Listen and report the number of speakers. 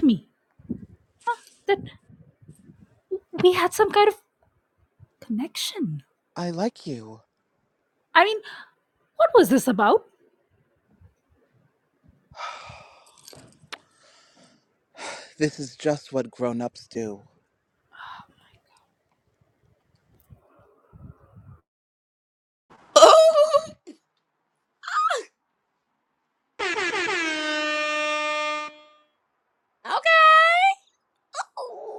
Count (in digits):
3